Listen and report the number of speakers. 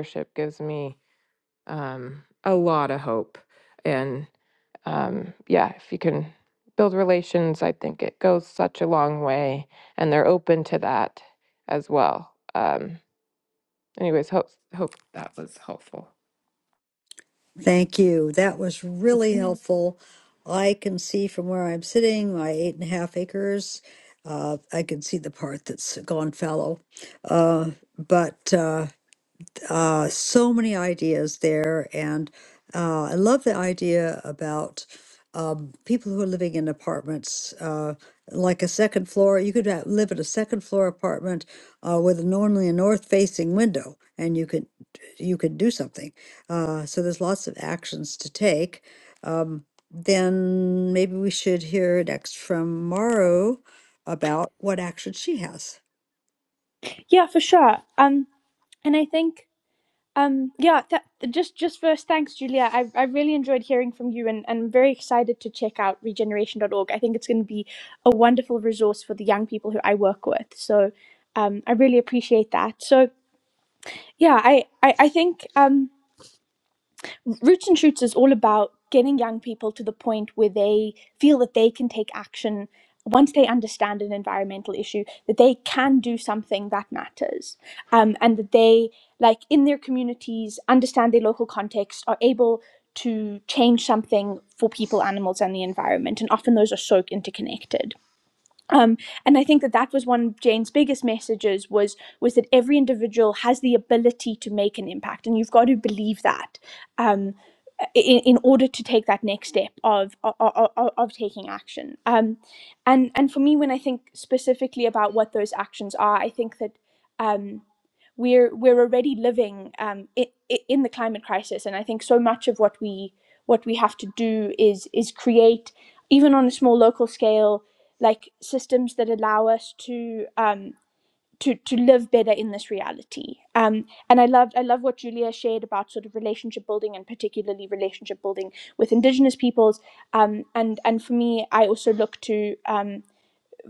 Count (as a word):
three